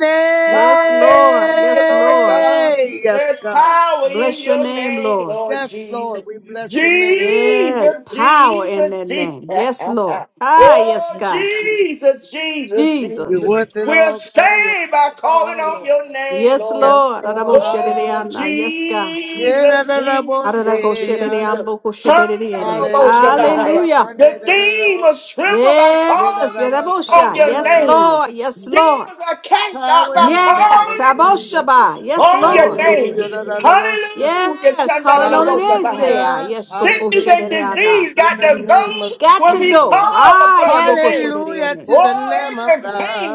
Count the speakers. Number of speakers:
3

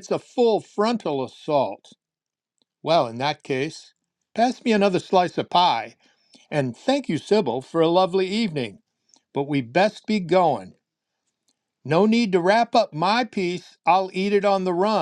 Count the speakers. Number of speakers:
1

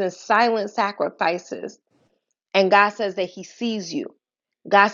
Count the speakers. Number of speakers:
1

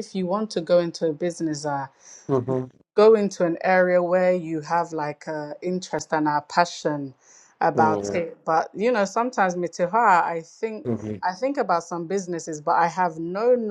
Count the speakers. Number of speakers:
2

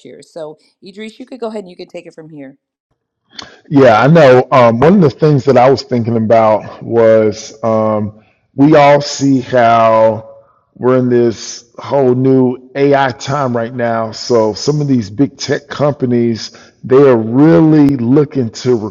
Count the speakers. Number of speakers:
2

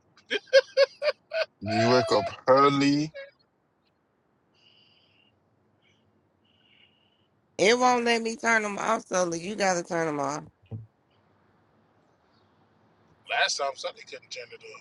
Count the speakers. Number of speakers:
3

